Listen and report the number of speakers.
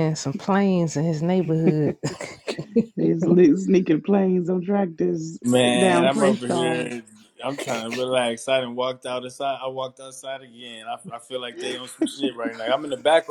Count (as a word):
three